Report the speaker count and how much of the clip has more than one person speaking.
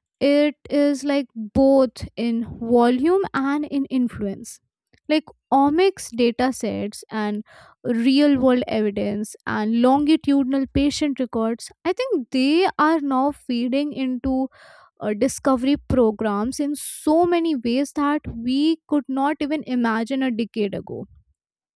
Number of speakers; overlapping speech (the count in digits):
1, no overlap